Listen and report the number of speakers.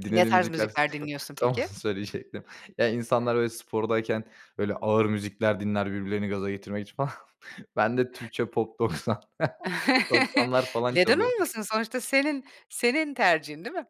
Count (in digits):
2